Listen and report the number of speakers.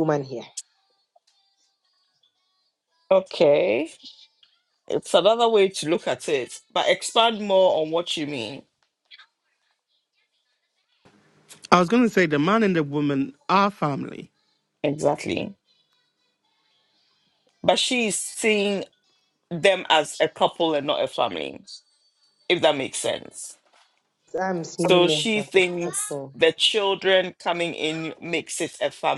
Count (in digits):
3